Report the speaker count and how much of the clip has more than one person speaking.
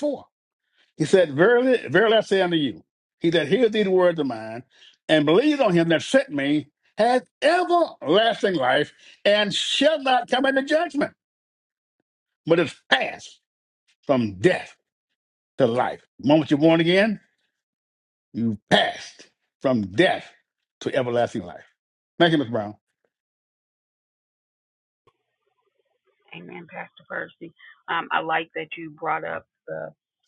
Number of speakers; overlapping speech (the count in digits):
2, no overlap